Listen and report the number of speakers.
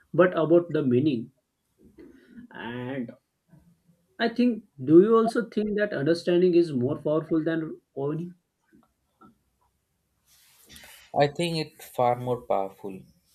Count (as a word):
two